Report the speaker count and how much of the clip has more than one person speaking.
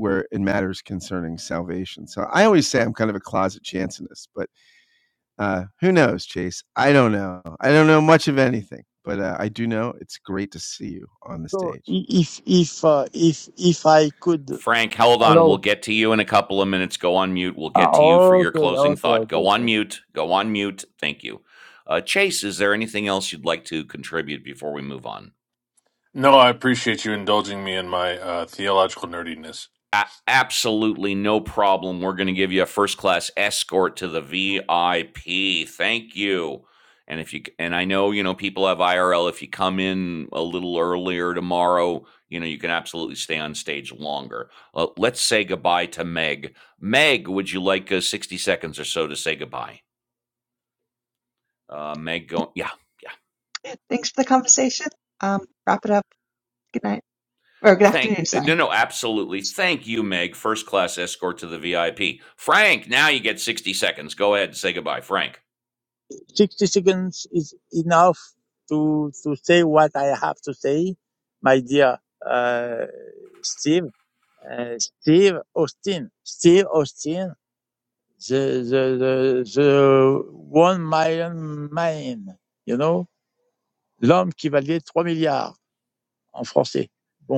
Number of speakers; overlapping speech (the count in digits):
5, about 3%